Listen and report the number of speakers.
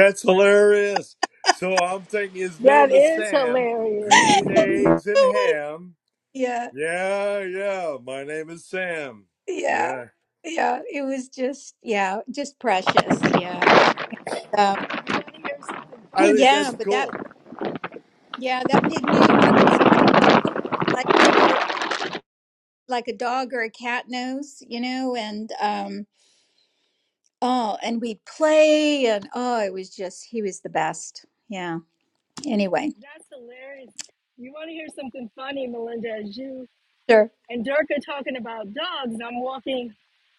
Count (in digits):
3